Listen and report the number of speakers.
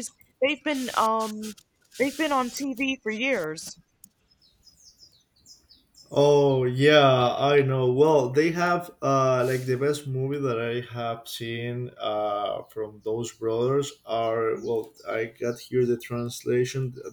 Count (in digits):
2